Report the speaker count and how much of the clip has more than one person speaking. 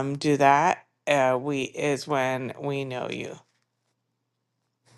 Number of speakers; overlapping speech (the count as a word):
one, no overlap